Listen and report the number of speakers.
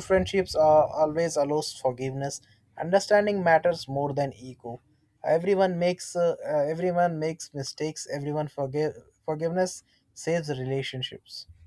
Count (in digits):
1